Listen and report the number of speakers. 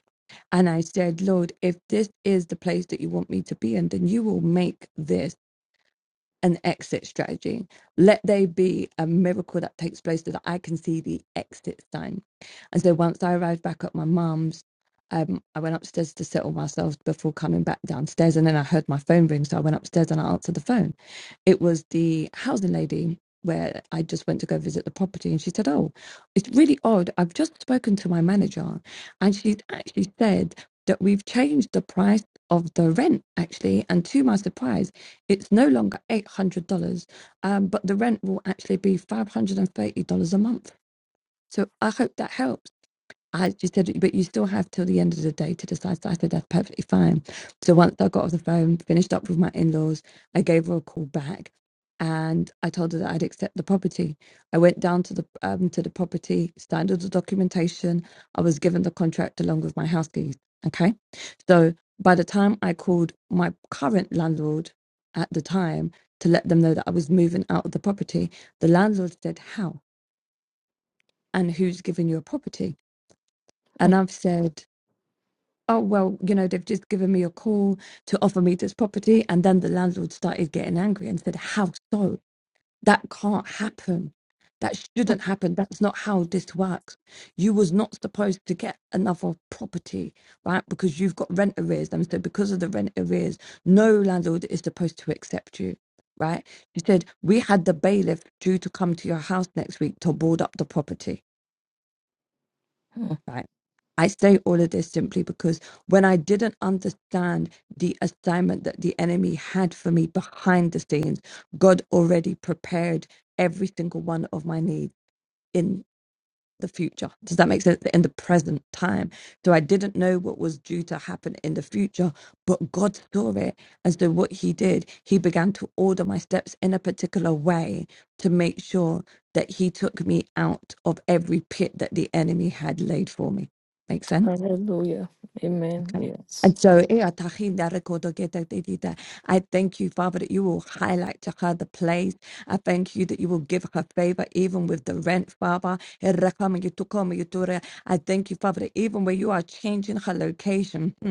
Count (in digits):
2